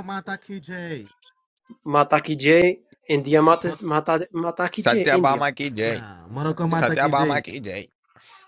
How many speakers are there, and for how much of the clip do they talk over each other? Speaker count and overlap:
3, about 17%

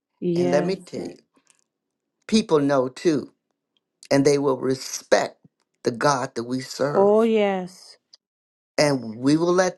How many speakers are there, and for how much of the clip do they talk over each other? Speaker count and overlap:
2, about 6%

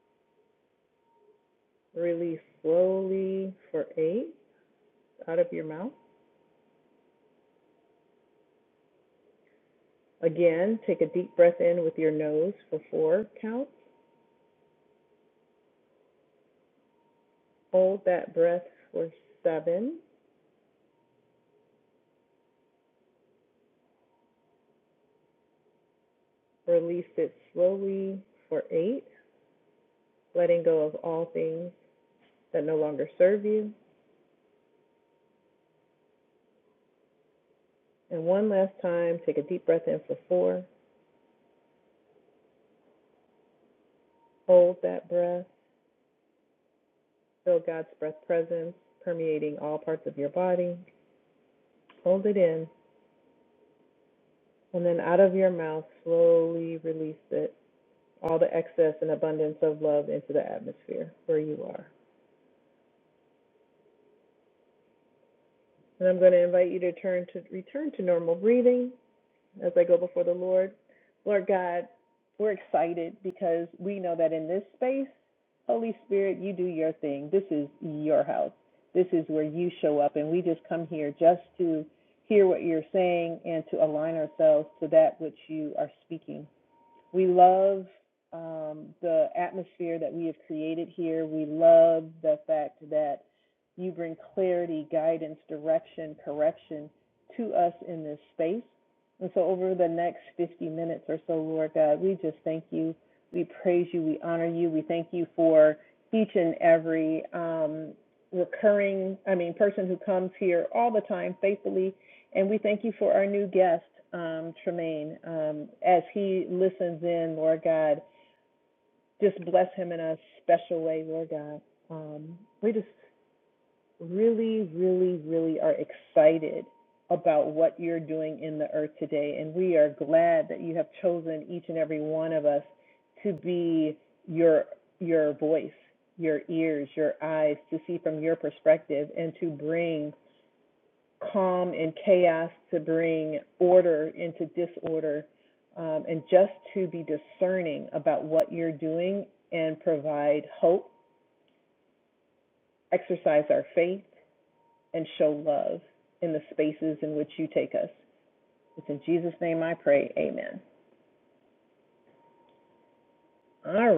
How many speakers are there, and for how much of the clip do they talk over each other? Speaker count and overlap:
1, no overlap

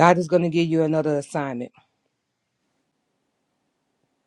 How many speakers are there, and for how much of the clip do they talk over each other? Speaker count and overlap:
1, no overlap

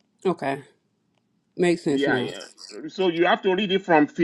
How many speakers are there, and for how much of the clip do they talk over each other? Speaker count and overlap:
2, about 10%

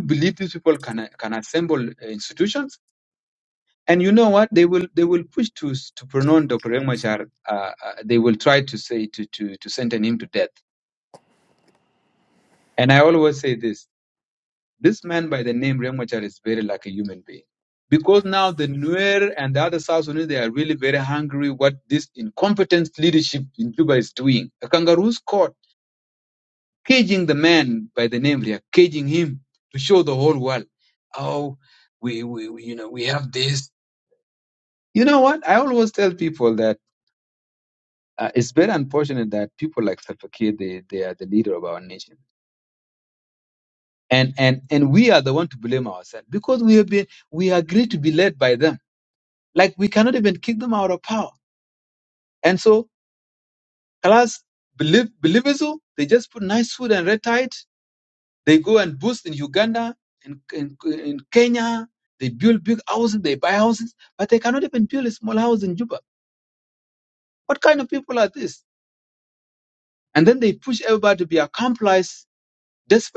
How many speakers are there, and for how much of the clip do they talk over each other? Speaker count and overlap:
1, no overlap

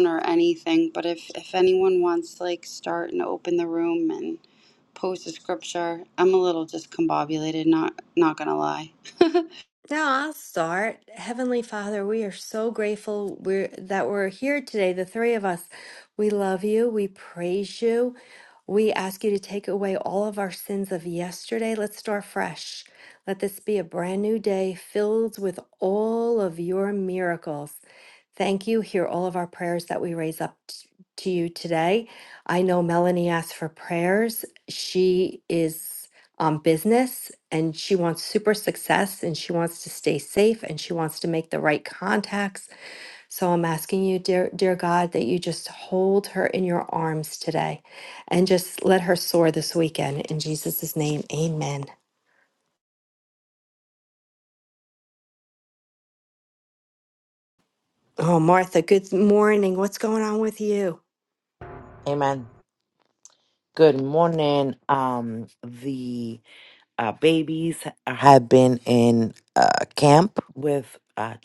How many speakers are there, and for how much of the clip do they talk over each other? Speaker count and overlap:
3, no overlap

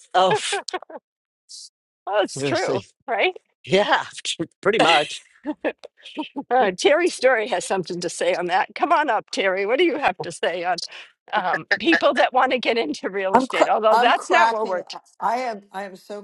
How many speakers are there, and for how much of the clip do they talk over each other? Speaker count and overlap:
3, about 12%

